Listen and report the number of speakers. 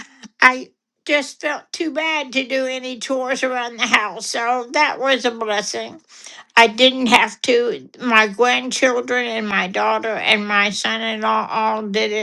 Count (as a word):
one